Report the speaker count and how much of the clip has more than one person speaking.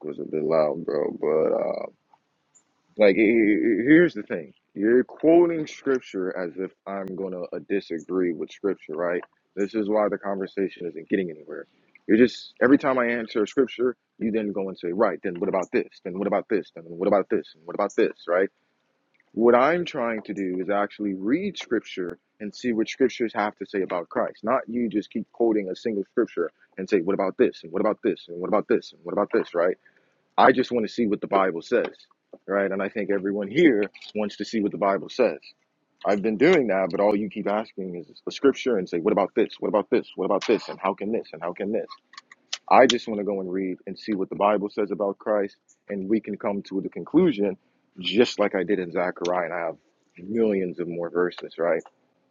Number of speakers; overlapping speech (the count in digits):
1, no overlap